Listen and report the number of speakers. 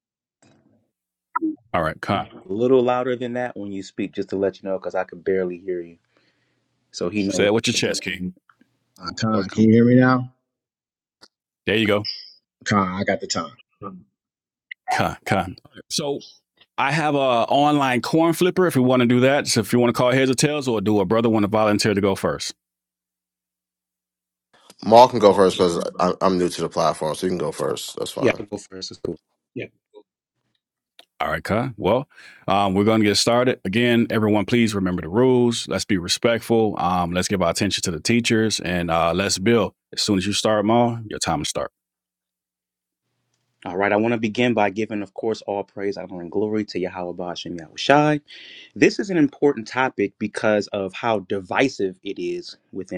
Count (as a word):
four